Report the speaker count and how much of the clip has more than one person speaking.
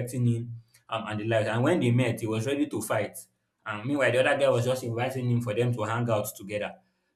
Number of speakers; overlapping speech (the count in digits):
1, no overlap